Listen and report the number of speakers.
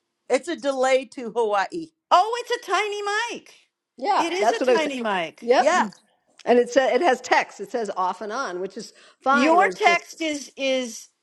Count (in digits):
3